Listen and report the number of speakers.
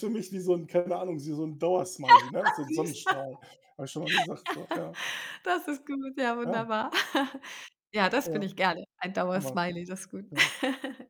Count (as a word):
two